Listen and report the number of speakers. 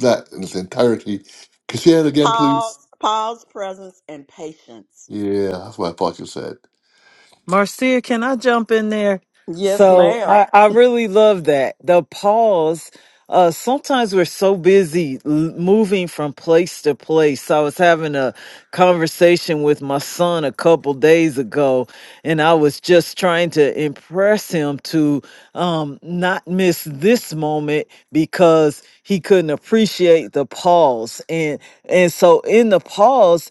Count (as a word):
three